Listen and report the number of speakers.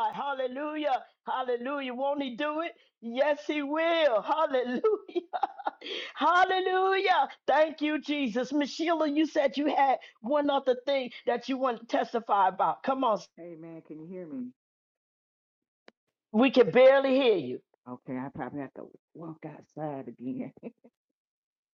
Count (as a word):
two